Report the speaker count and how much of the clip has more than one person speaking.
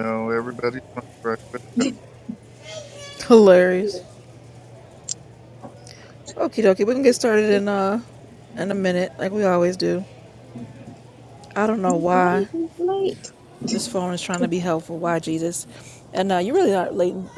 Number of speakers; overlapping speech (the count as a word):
three, about 5%